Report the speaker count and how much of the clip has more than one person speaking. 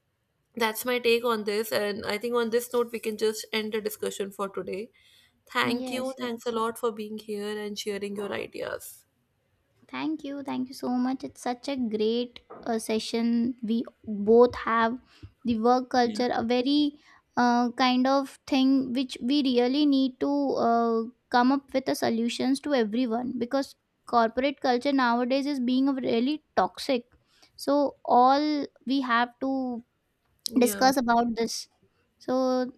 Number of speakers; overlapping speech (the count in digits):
2, about 3%